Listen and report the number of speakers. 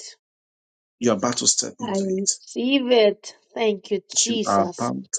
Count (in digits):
2